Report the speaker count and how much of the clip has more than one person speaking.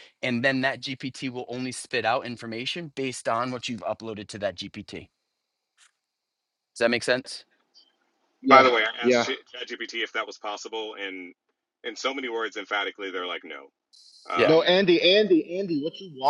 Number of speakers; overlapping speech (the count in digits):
3, about 7%